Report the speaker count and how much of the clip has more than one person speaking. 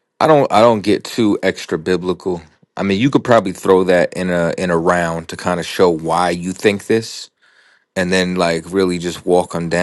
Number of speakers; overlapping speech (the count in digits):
1, no overlap